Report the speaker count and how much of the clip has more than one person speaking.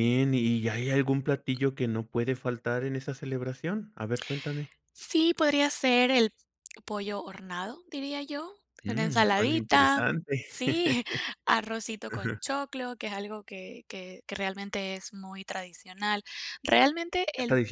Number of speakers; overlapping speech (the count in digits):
2, about 9%